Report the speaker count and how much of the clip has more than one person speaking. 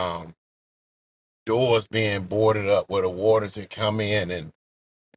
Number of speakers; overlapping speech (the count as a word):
one, no overlap